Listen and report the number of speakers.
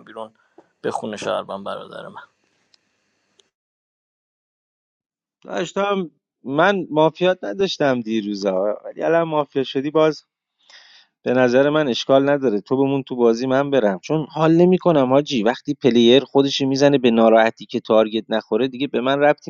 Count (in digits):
2